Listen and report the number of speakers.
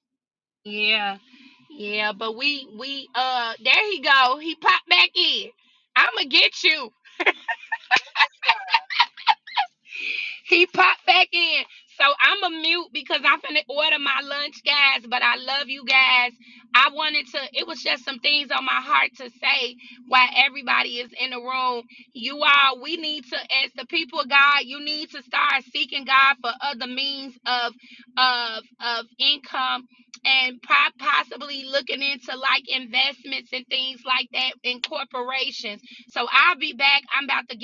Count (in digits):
1